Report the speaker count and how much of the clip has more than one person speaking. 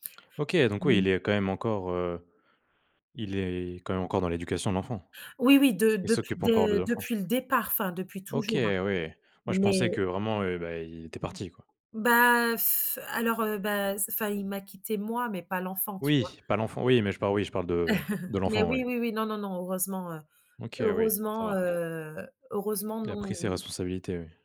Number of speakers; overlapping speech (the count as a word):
two, about 17%